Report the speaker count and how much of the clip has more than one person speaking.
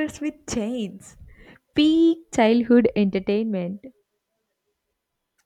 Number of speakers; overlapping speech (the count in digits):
1, no overlap